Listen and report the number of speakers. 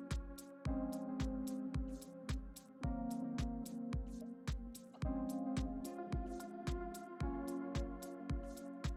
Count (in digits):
0